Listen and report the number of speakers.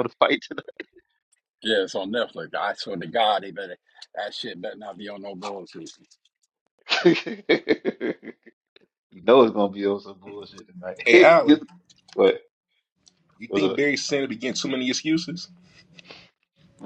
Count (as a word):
three